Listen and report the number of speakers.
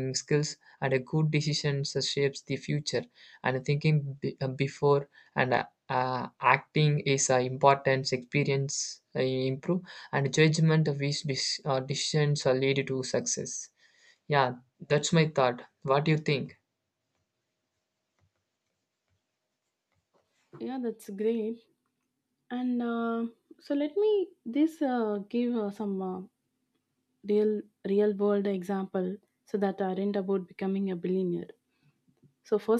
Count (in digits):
2